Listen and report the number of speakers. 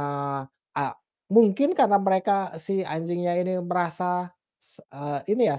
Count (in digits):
1